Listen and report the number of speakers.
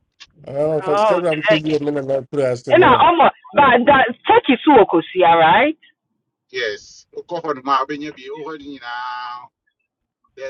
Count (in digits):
3